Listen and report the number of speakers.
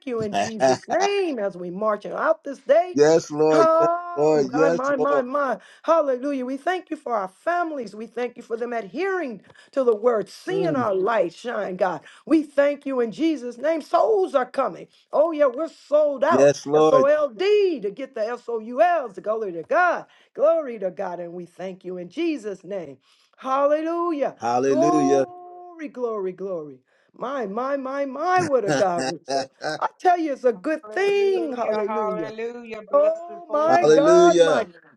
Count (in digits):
3